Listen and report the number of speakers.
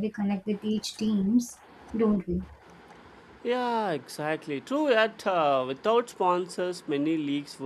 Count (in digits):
2